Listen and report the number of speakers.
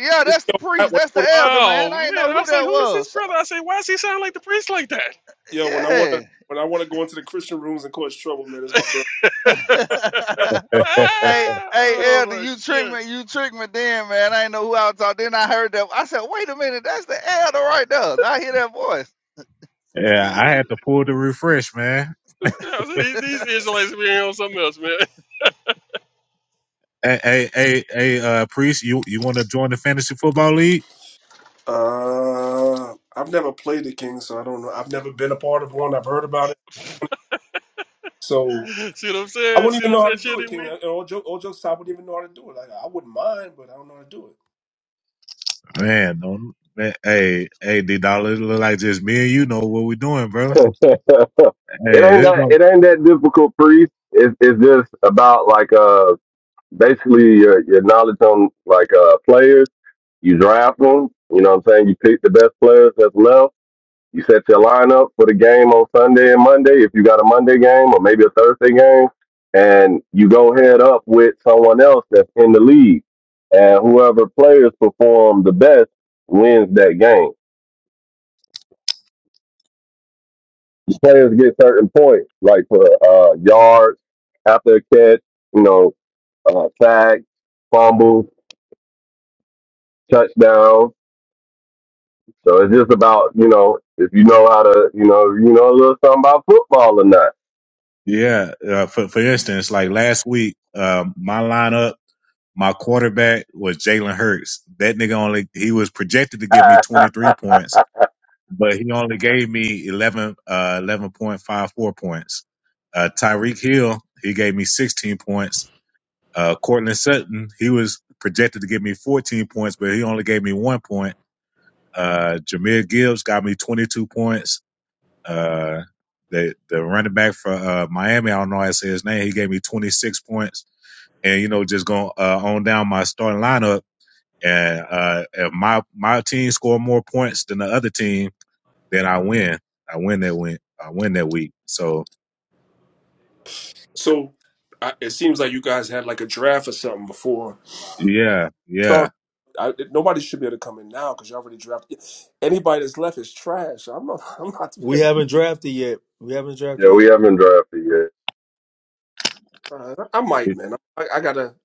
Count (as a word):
six